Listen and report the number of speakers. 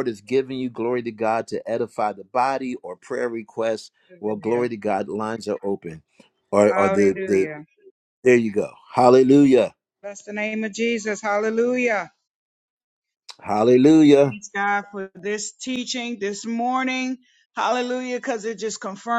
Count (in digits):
2